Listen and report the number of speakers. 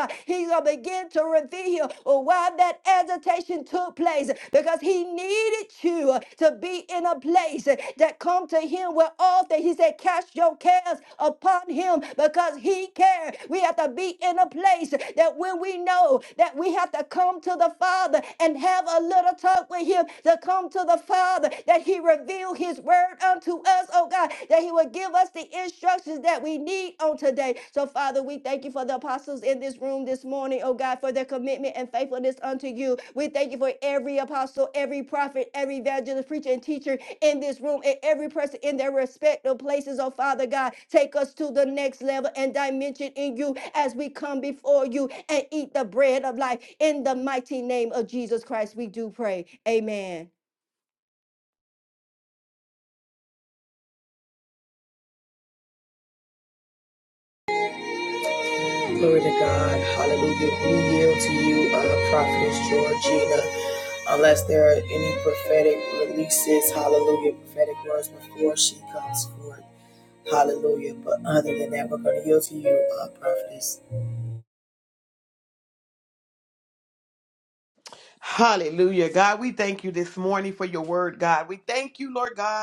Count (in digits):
3